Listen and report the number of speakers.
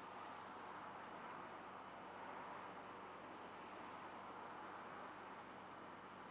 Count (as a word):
zero